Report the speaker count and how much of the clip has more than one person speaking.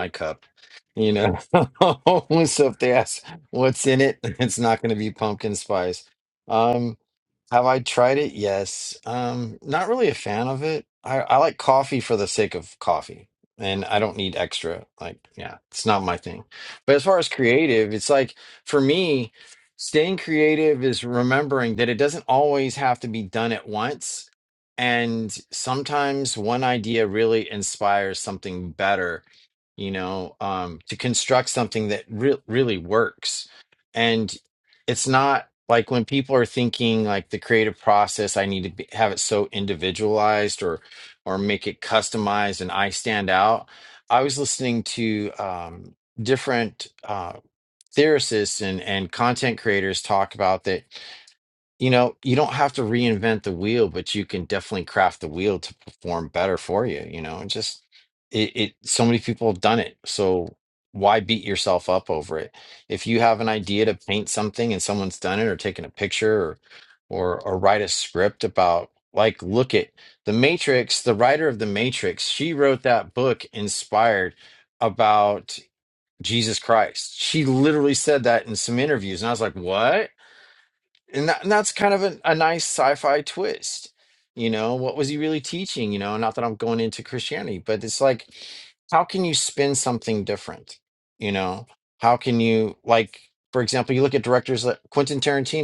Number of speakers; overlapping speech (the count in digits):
1, no overlap